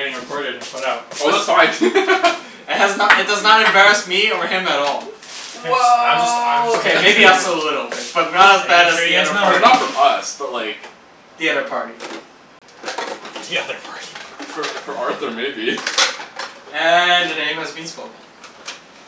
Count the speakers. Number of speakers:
3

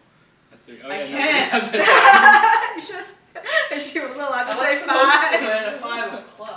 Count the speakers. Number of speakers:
3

